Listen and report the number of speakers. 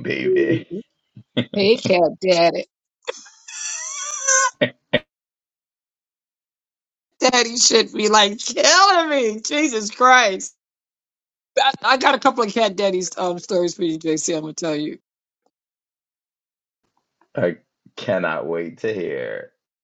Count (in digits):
2